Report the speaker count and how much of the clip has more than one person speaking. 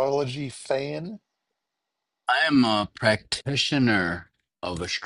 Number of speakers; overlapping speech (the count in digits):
2, no overlap